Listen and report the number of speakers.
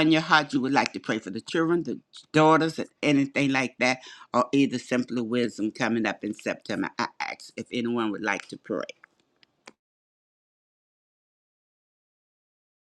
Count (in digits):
1